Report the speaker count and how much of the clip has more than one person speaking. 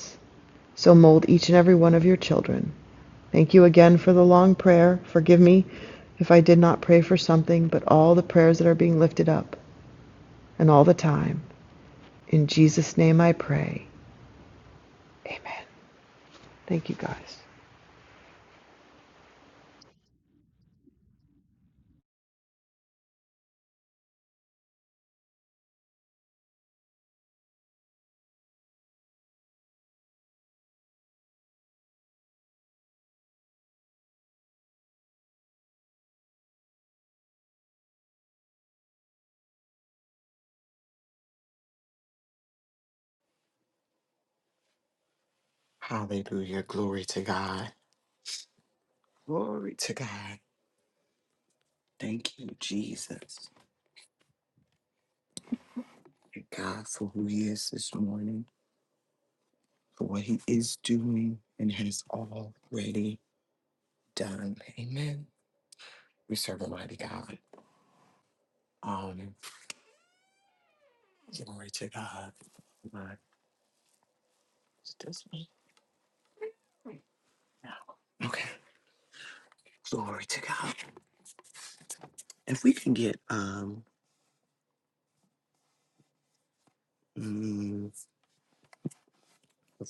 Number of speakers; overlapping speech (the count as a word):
two, no overlap